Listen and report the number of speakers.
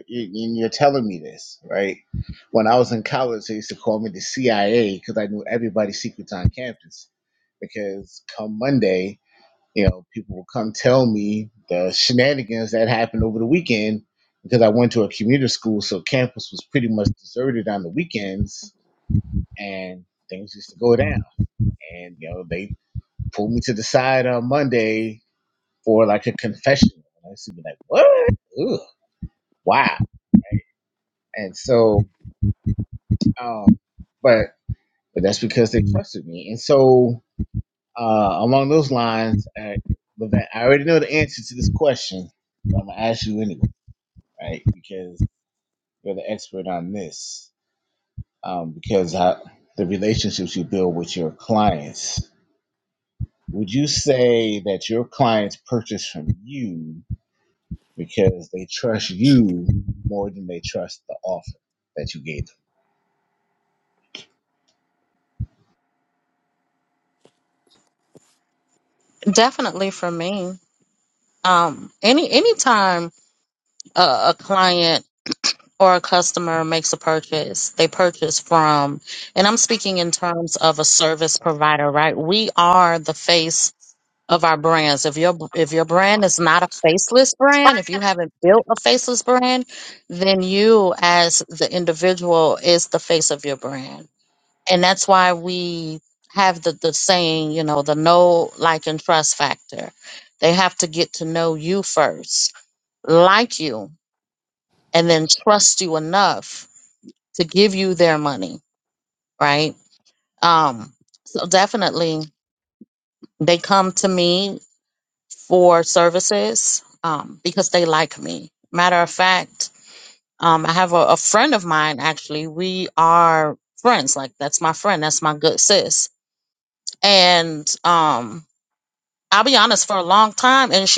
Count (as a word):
two